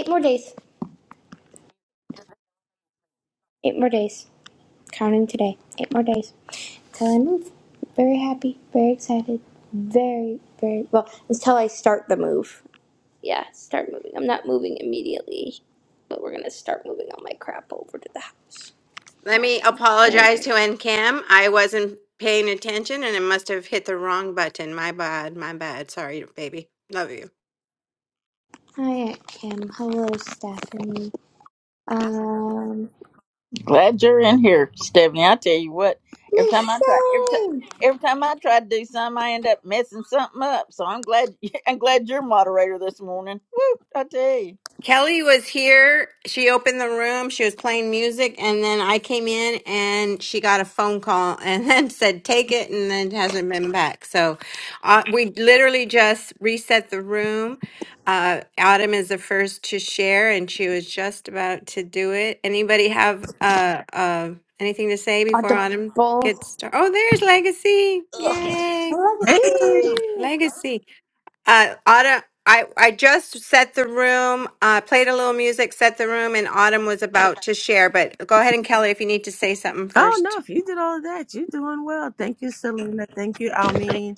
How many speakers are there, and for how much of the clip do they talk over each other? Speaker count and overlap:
4, about 4%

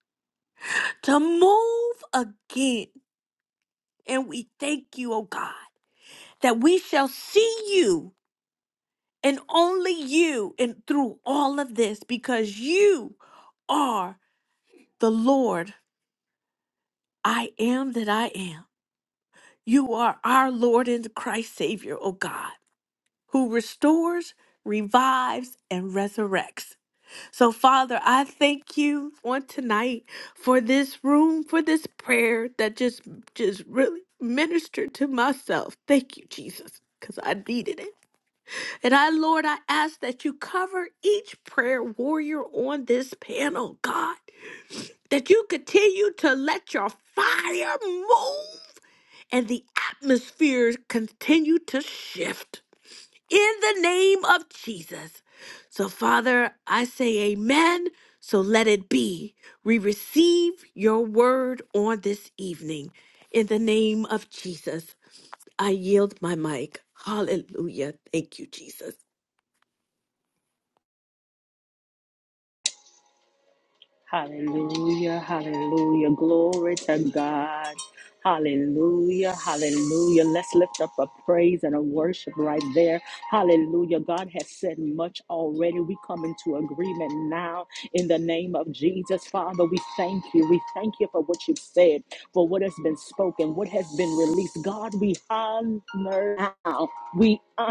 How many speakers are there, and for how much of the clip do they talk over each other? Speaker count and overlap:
2, no overlap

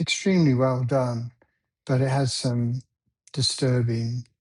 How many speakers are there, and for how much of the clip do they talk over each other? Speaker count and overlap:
1, no overlap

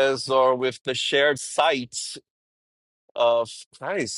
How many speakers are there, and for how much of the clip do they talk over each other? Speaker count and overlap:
1, no overlap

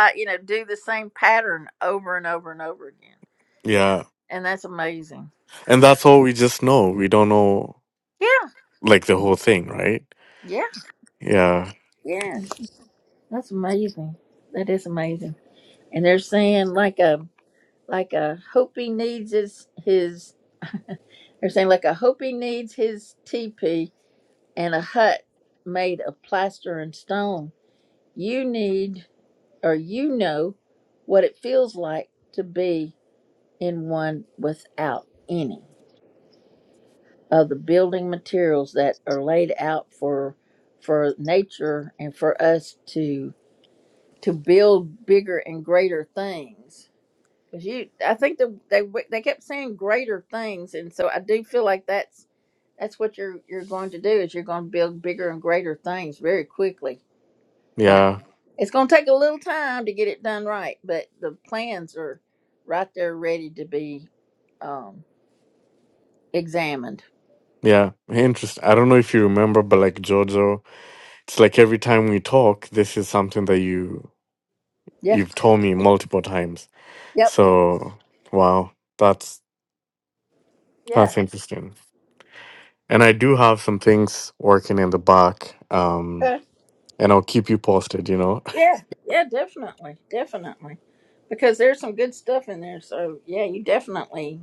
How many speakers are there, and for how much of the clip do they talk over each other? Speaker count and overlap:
2, about 1%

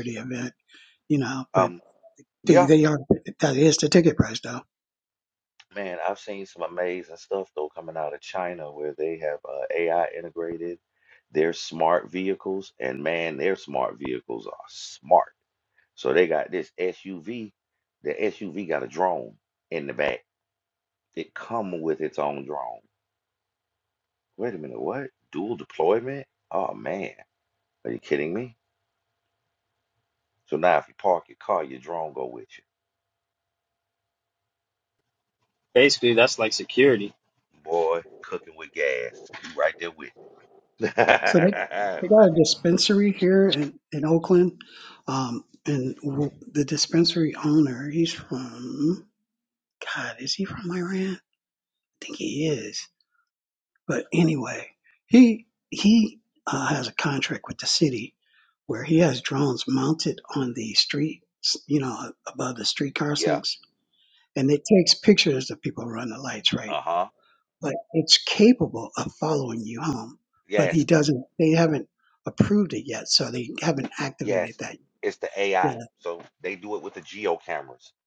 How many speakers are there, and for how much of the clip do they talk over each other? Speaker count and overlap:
3, about 2%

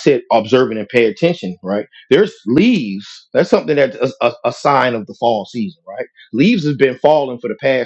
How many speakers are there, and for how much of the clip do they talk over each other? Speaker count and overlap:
1, no overlap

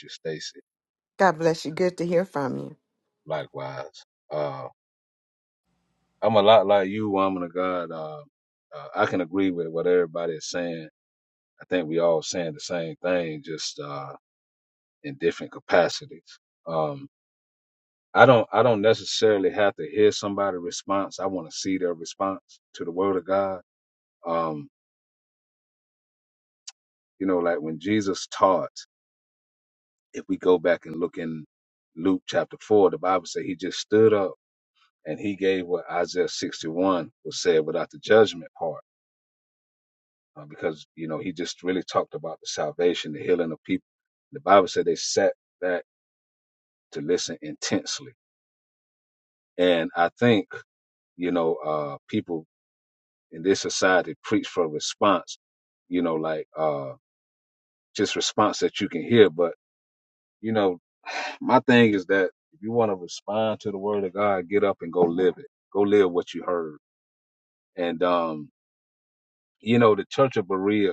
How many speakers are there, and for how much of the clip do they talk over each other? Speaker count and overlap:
2, no overlap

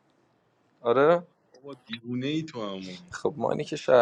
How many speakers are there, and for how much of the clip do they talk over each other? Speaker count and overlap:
2, no overlap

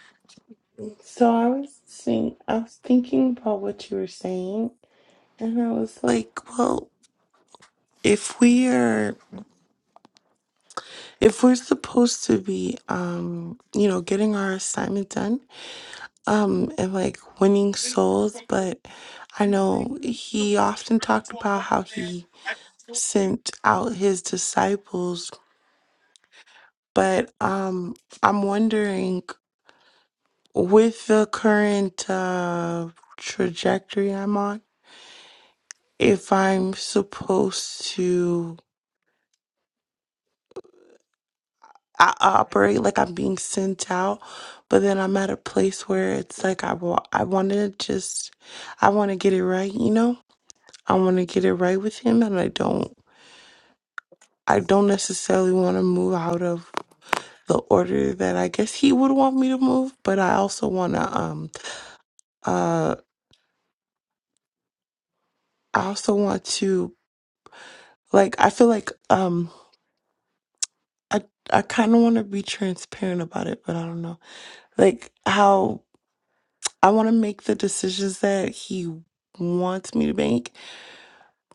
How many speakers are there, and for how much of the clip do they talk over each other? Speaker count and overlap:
1, no overlap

